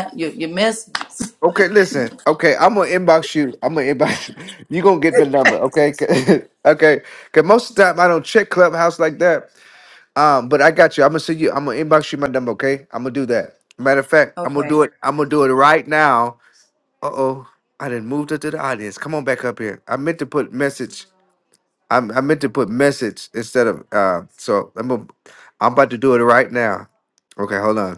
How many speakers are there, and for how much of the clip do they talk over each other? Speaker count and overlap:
two, about 2%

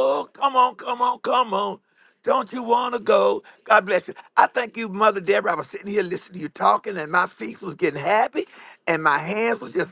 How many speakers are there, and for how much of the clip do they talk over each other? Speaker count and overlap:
one, no overlap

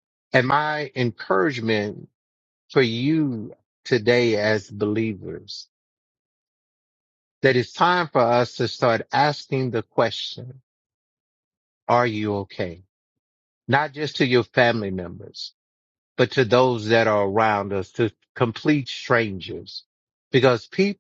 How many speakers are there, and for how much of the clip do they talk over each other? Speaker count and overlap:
one, no overlap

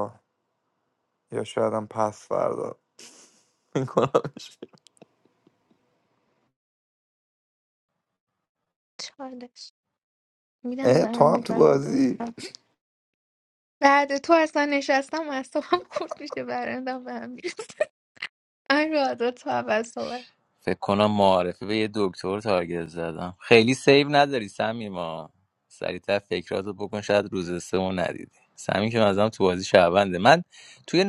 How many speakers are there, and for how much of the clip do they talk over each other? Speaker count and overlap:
three, about 4%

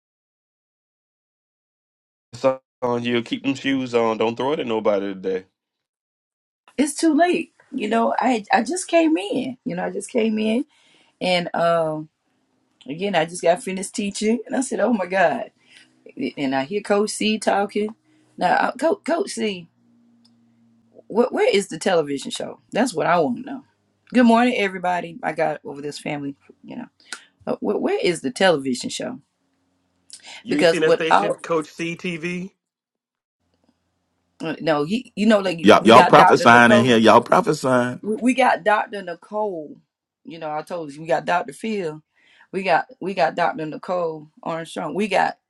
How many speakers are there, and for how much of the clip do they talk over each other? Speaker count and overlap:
three, about 5%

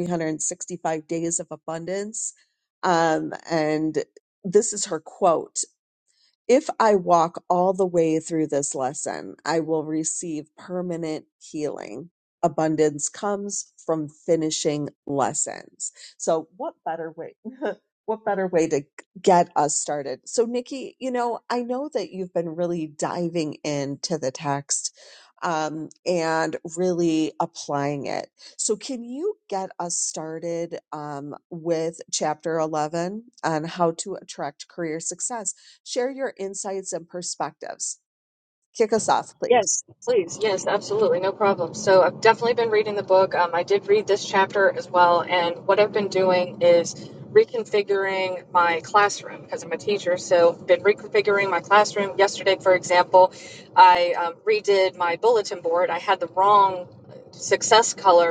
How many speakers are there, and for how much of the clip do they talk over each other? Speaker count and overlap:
two, under 1%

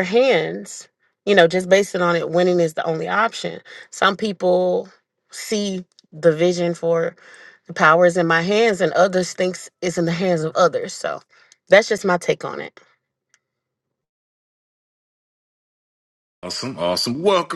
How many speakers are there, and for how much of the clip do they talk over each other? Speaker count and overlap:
two, no overlap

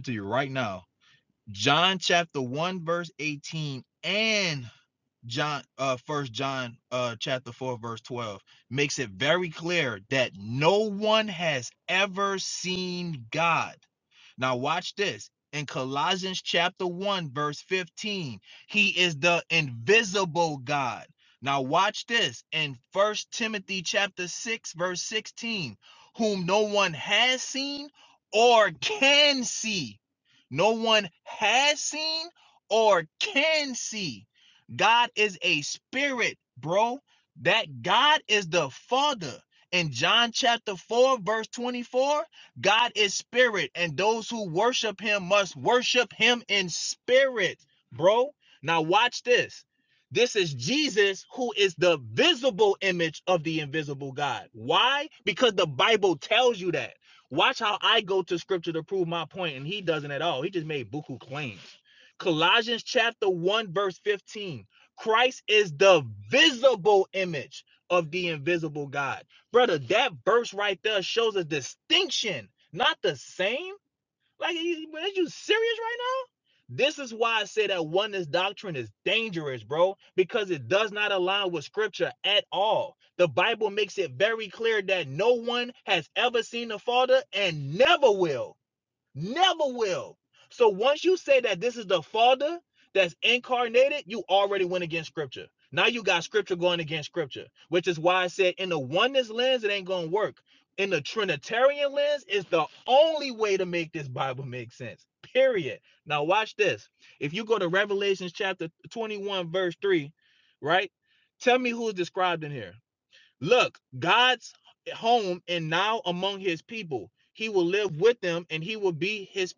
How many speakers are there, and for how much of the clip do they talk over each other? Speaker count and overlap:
one, no overlap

